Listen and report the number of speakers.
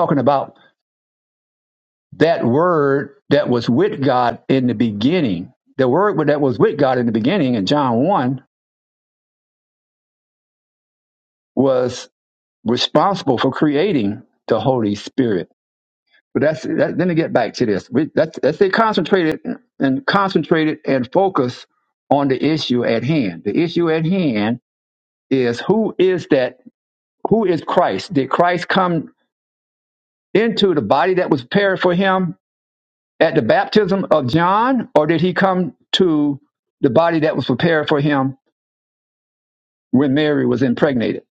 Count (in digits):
1